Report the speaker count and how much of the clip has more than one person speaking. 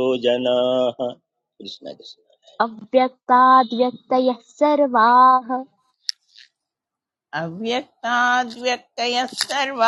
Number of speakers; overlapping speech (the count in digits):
3, no overlap